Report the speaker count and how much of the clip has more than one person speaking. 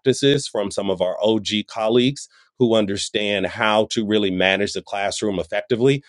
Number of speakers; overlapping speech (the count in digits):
1, no overlap